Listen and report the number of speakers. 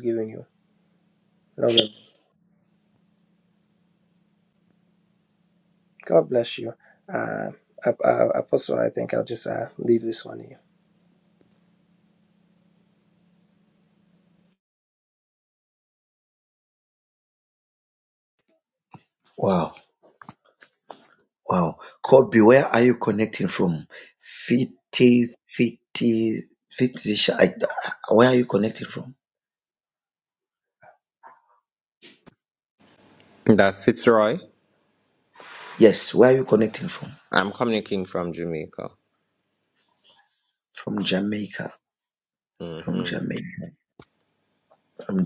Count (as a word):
three